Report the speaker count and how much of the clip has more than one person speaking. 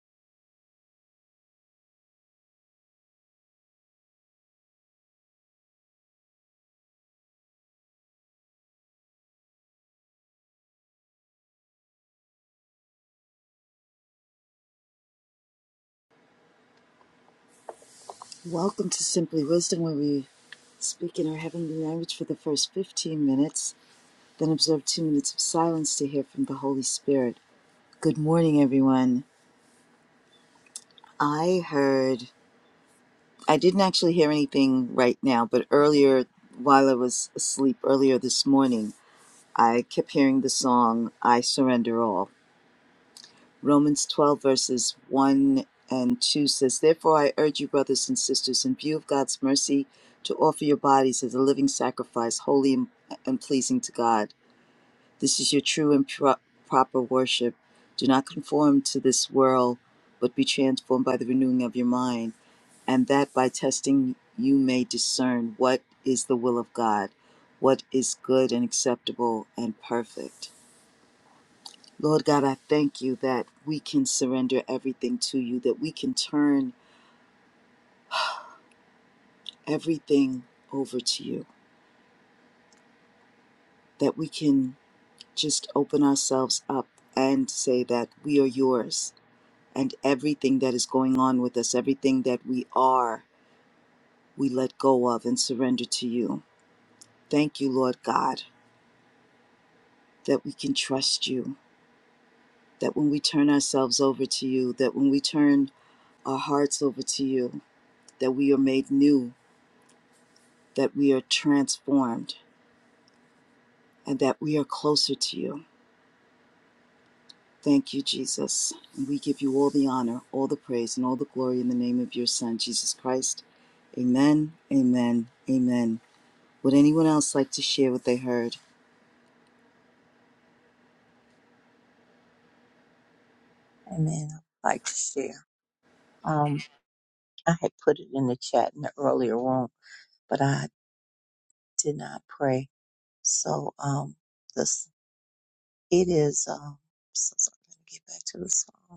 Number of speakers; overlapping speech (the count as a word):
two, no overlap